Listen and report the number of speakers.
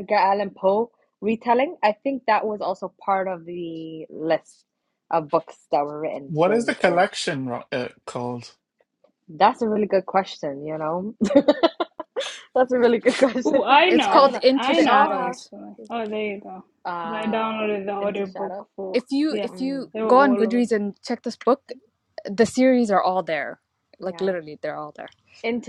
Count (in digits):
4